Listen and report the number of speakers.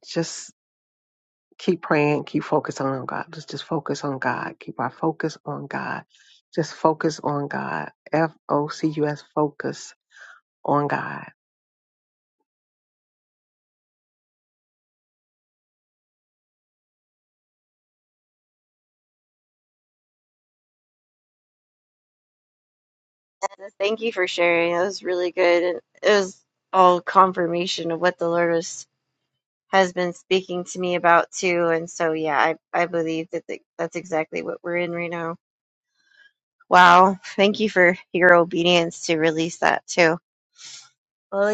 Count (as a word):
two